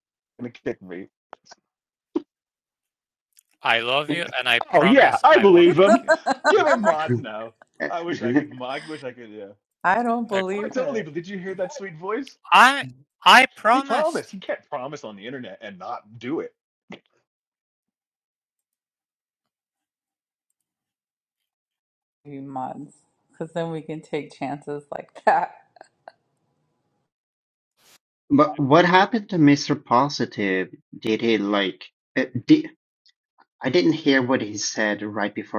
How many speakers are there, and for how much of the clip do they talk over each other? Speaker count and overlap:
four, about 7%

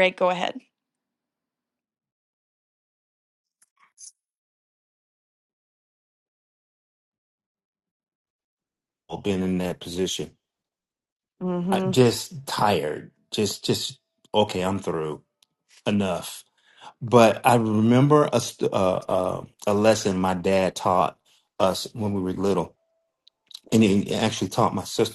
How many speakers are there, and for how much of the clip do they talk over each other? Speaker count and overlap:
two, about 1%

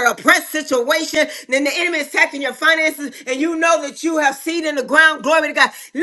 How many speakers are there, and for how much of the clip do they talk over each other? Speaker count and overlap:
one, no overlap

